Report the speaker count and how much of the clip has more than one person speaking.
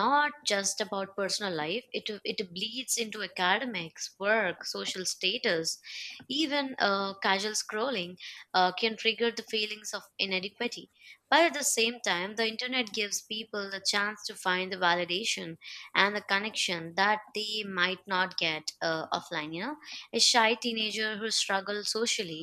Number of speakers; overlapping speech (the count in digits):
1, no overlap